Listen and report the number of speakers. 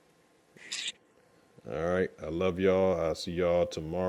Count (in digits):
1